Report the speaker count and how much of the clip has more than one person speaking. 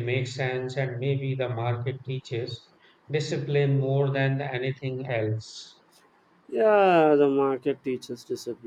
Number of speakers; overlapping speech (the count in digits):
2, no overlap